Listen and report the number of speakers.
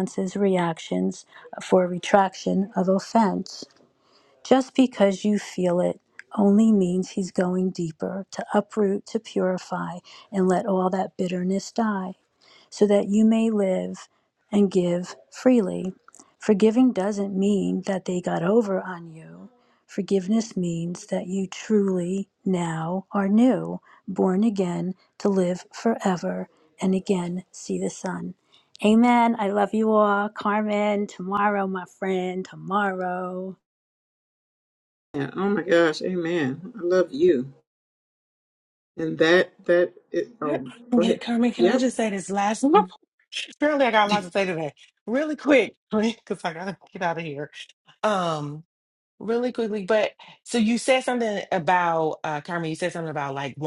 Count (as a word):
three